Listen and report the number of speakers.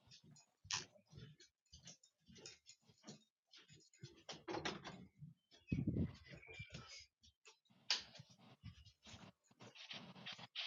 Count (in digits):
0